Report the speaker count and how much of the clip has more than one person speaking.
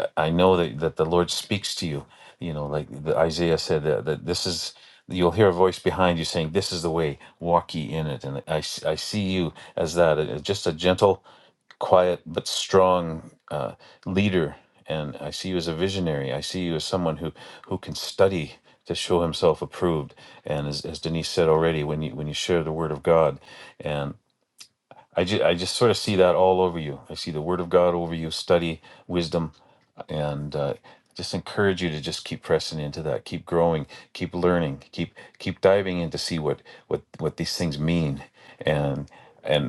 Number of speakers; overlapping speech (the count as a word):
one, no overlap